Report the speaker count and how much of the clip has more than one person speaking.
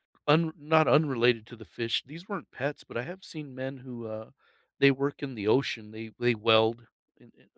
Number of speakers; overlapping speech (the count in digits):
1, no overlap